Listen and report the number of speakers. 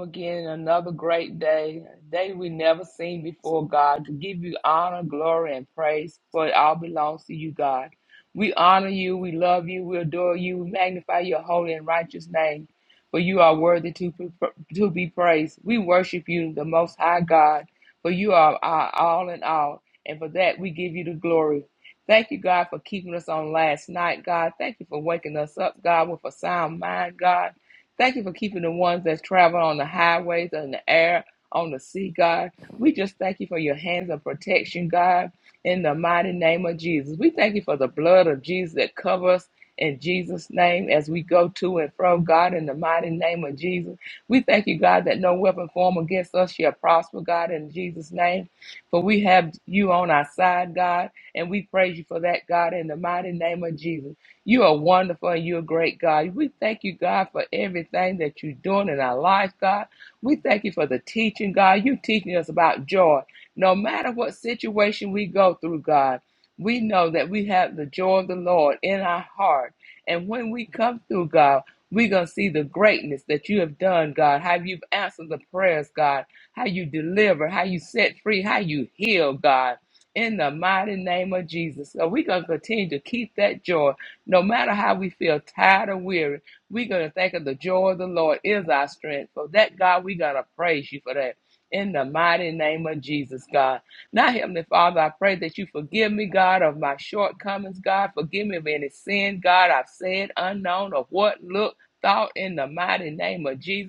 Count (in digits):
1